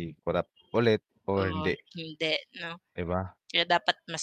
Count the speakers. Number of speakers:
two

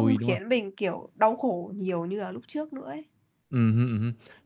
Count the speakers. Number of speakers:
two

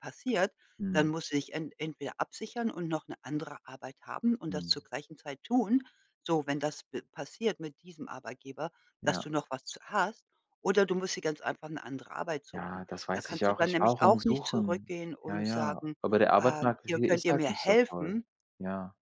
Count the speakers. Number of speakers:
two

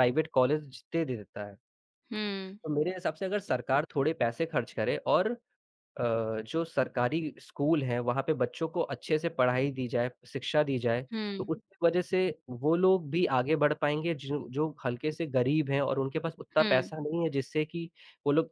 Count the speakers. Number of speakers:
two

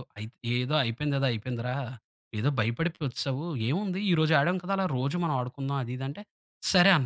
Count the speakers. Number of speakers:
one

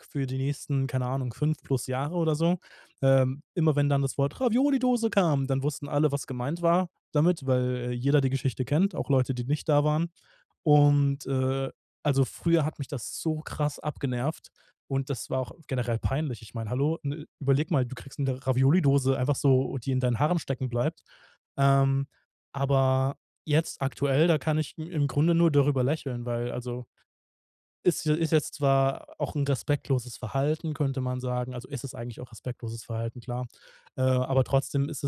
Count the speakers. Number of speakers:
one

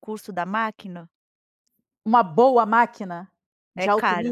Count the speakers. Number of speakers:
two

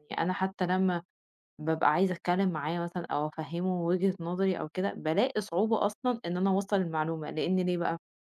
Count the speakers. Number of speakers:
one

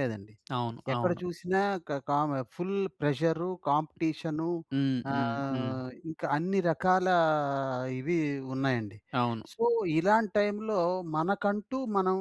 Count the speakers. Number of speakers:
two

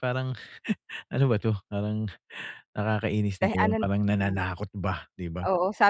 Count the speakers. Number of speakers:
two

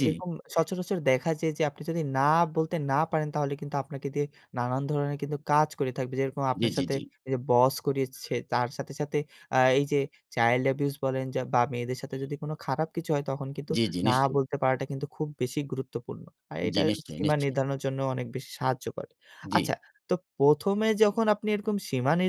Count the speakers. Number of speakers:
two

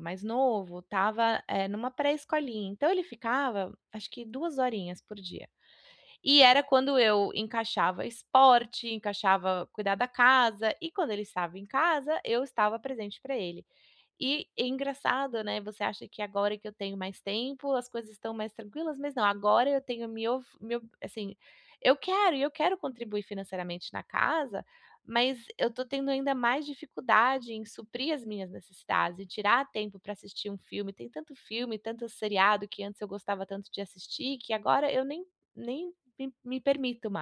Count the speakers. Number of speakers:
one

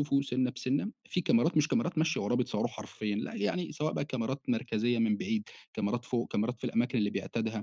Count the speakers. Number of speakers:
one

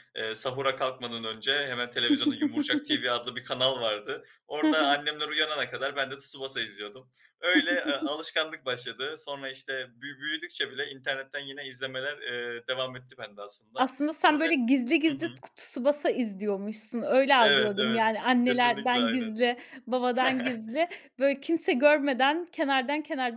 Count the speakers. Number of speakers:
two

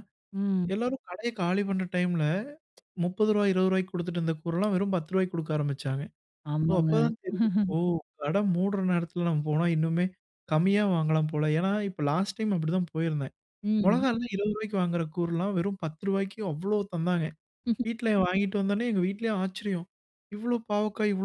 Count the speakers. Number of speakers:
two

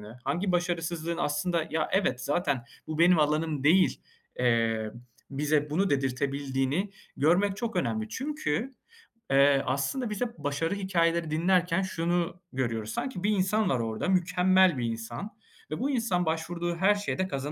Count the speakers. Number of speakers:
one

